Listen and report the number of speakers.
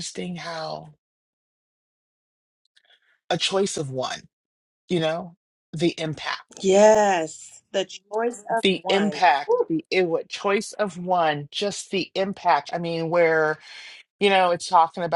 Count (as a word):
two